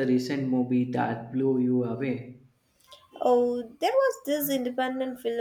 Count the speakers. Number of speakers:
two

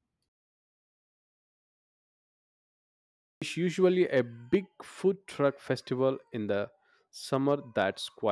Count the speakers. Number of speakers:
one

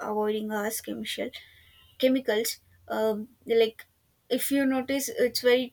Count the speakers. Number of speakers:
one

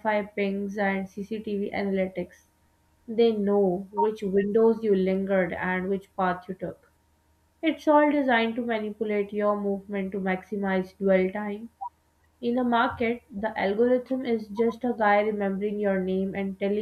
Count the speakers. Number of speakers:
one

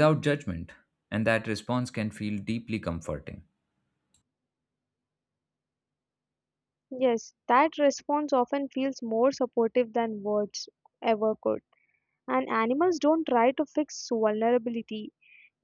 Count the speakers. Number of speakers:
two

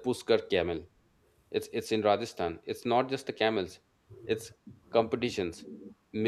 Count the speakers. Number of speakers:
one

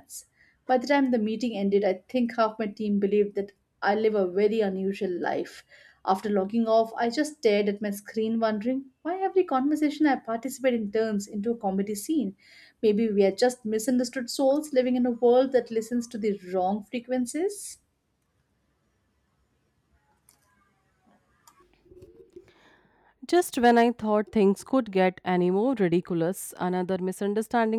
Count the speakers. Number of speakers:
two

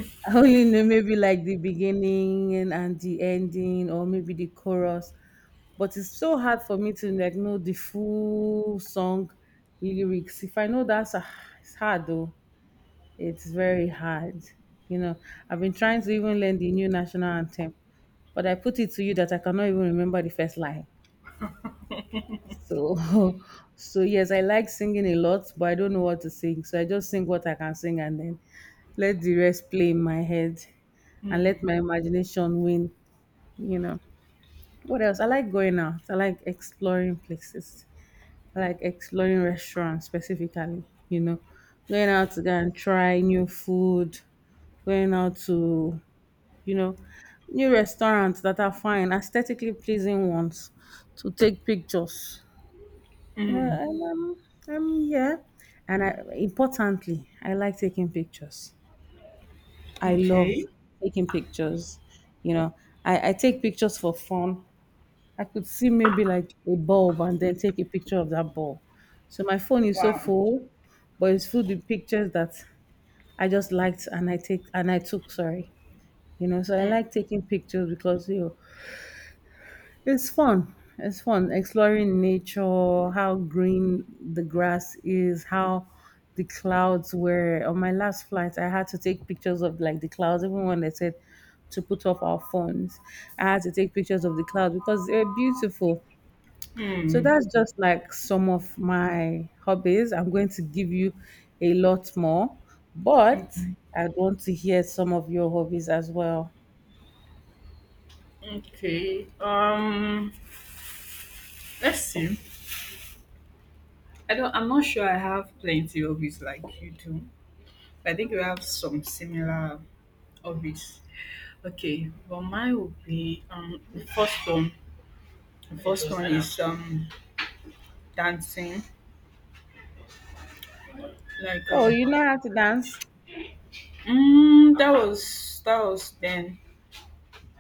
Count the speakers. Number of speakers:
two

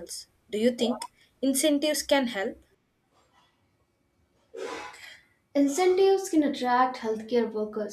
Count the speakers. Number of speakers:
two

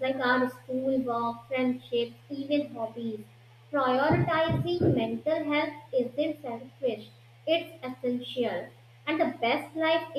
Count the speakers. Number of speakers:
one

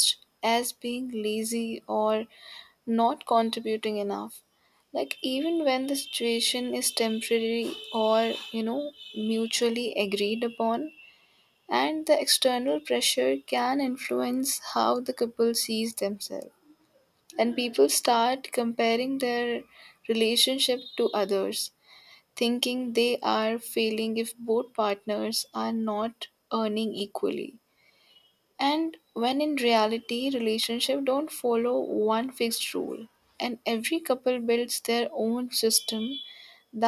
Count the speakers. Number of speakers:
one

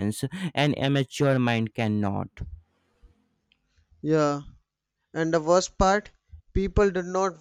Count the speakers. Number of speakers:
two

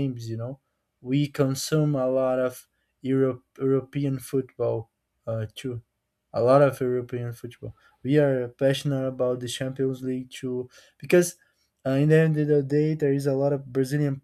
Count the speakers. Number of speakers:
one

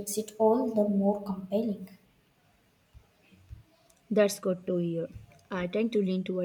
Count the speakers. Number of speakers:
two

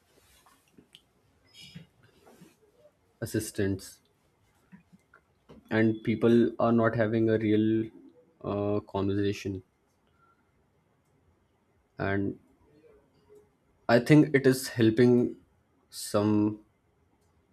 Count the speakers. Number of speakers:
one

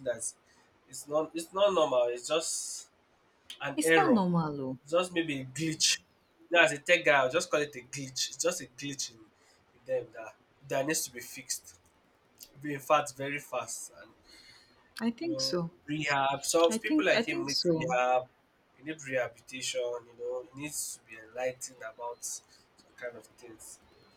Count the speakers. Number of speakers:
two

